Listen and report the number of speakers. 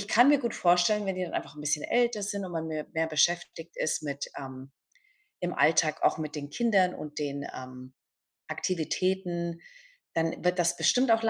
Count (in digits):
1